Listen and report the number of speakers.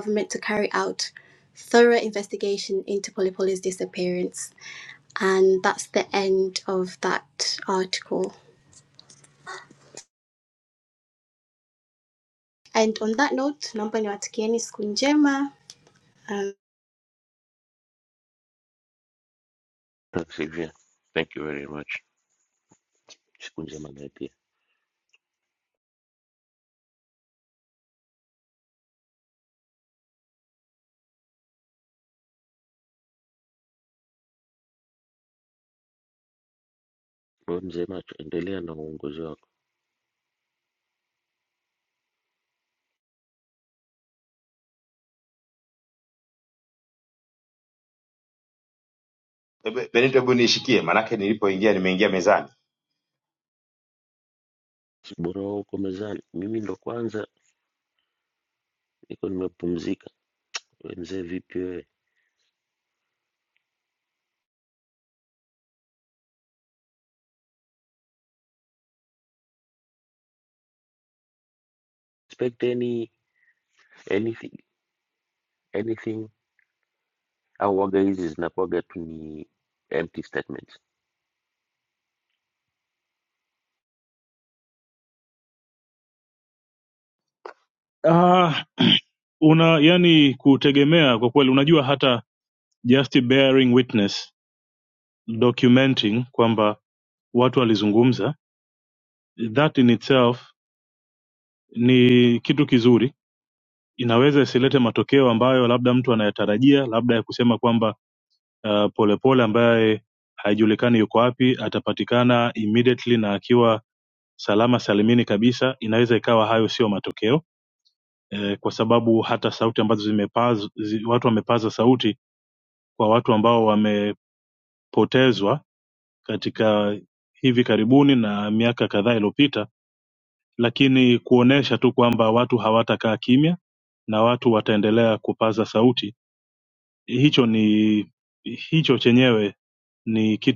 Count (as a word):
four